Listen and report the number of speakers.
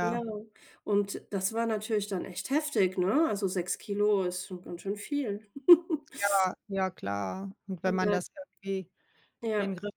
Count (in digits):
2